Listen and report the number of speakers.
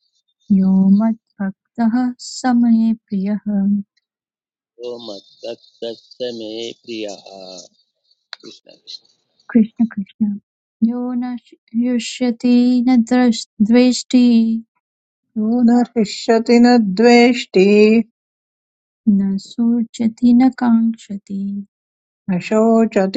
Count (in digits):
3